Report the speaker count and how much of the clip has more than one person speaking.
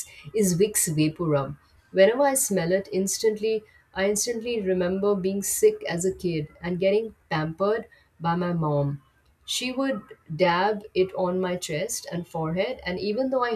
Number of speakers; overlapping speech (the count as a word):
one, no overlap